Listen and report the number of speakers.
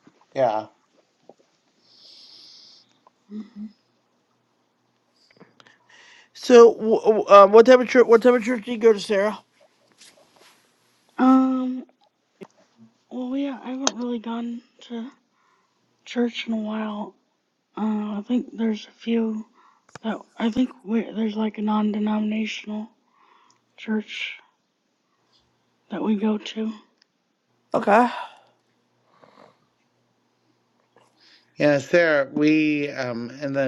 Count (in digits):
3